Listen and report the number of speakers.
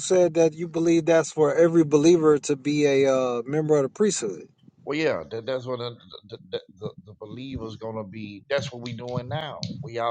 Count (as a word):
two